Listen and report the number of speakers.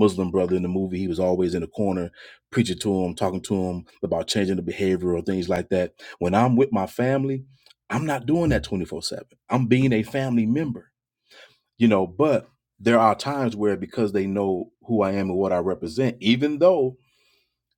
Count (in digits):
1